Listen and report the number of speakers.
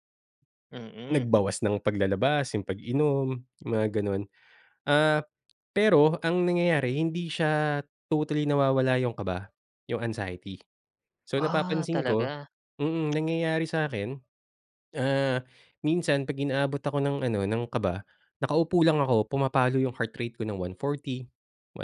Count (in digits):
2